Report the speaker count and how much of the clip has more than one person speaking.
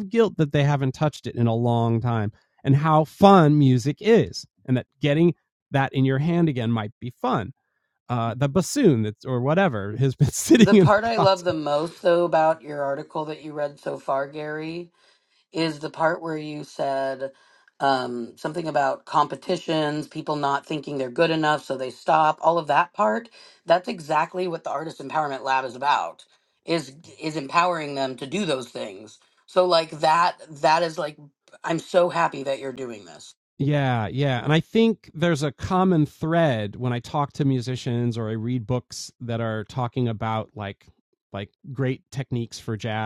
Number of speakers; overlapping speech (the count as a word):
two, about 2%